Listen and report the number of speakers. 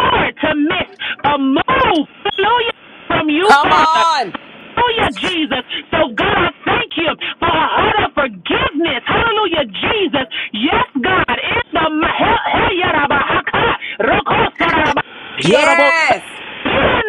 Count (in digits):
2